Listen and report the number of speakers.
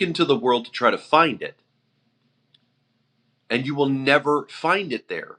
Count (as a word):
one